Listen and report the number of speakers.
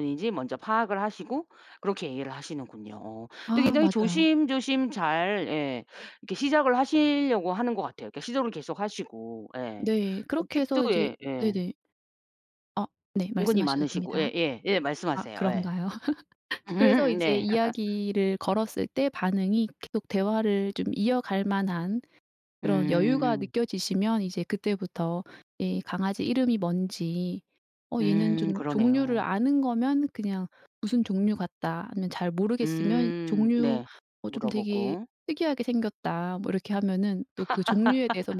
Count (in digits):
2